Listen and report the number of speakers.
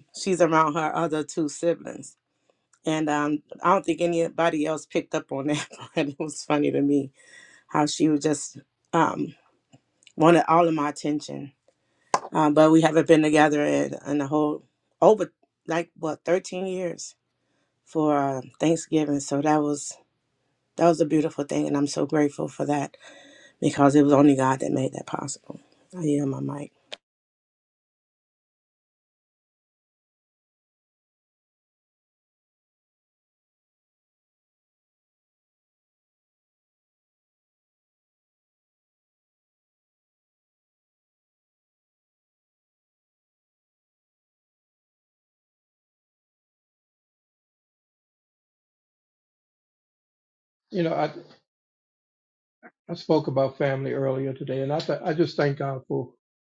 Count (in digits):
2